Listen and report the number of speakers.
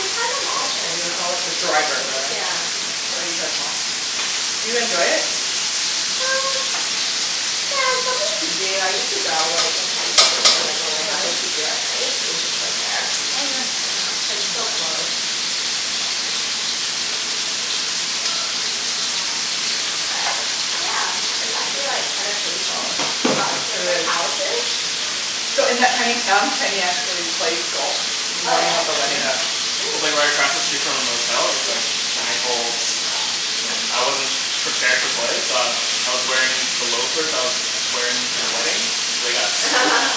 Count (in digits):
3